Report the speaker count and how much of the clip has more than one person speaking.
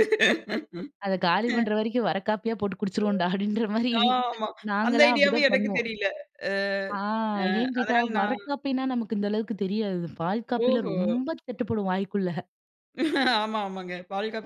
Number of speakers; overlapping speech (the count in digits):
2, about 17%